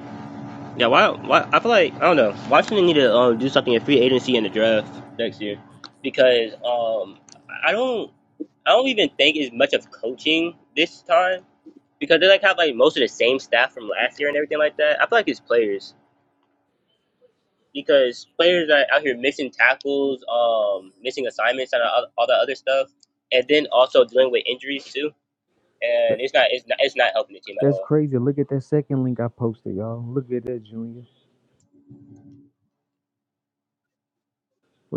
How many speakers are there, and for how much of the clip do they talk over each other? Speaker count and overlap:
2, about 1%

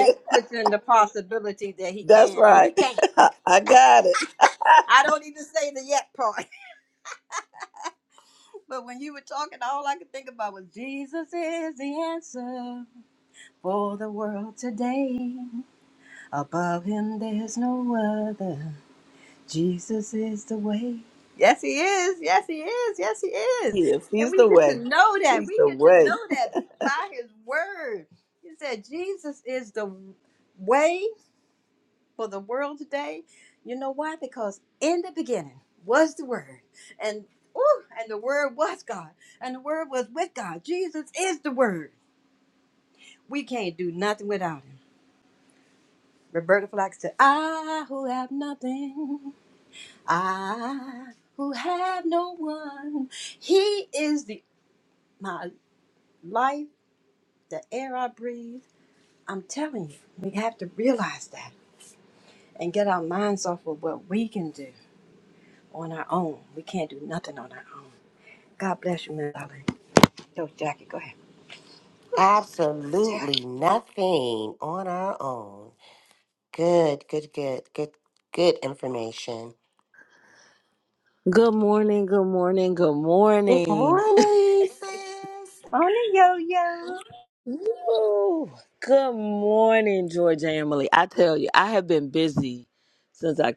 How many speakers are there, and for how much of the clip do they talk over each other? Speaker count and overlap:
4, about 4%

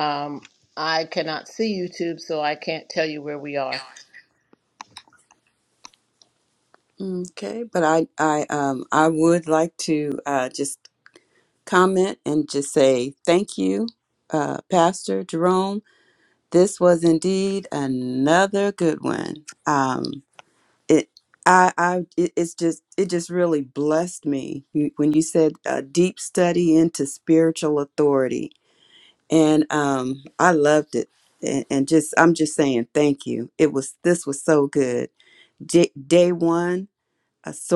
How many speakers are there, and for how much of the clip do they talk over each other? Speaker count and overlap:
2, no overlap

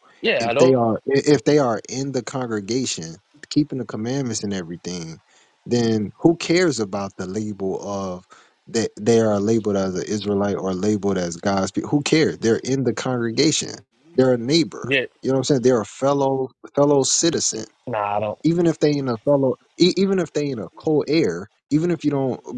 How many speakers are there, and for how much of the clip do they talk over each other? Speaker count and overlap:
2, about 2%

